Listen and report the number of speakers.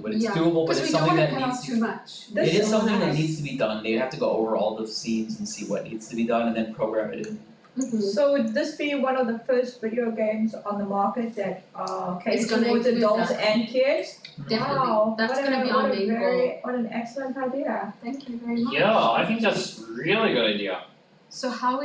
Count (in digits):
4